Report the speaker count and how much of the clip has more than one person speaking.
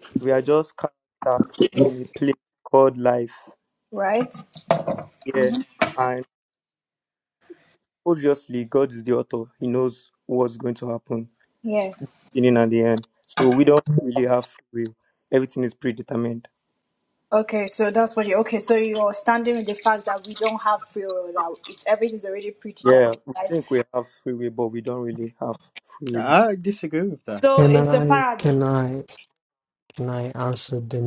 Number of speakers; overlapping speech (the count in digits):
4, about 6%